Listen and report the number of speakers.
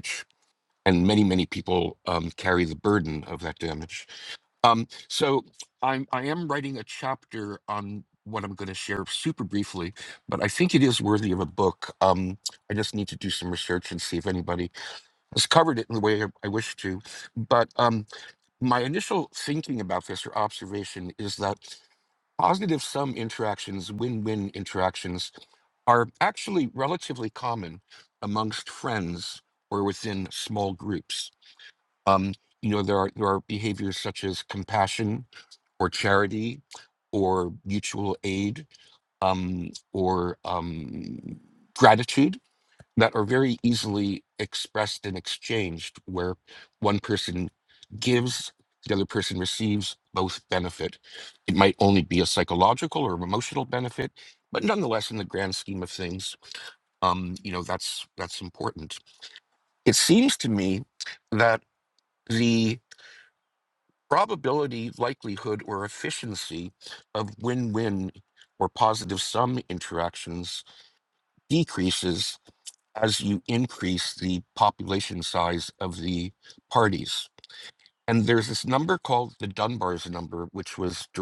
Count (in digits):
1